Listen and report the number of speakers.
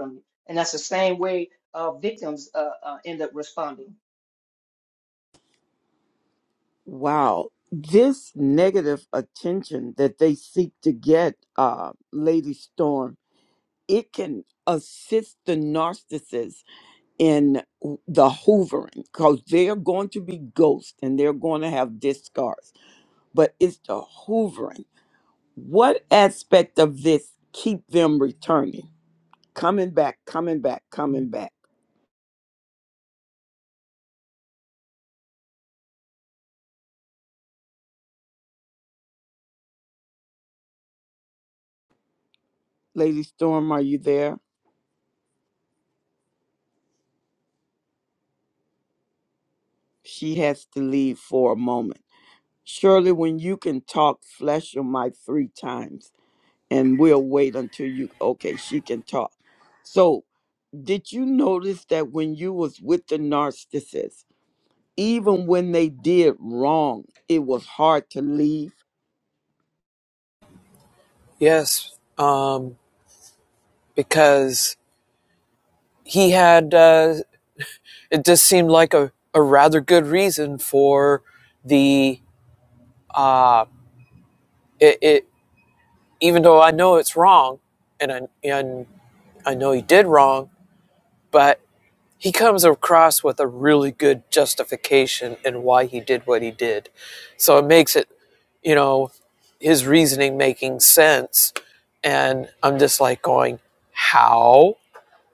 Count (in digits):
3